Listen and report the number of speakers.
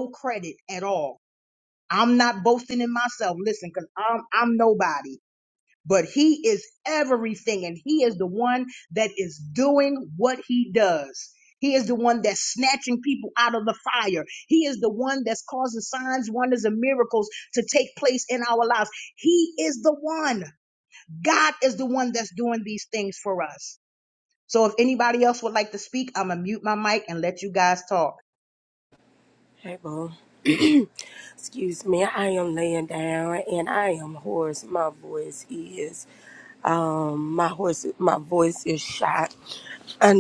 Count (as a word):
two